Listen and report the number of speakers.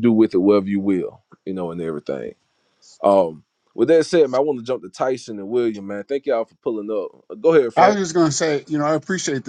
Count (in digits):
2